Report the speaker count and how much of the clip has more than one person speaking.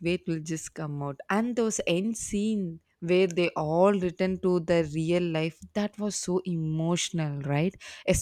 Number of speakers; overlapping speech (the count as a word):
one, no overlap